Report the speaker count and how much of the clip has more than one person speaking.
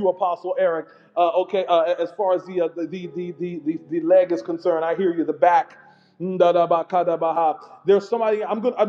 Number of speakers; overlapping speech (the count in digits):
1, no overlap